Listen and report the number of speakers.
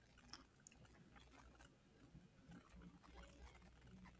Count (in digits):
0